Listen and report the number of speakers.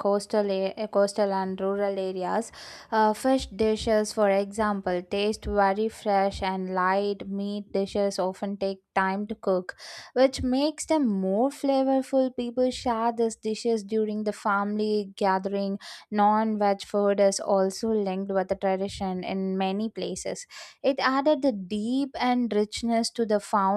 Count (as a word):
one